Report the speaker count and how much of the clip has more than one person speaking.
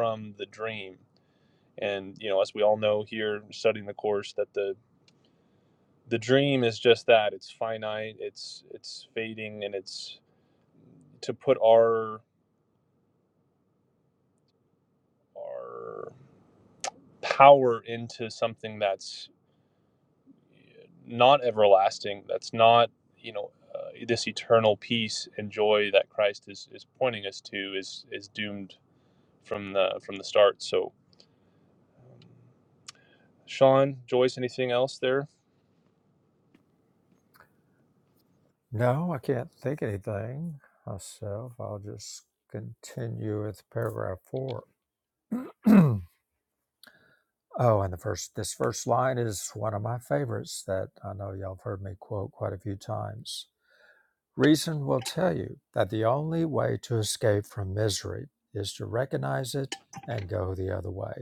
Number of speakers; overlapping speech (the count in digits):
2, no overlap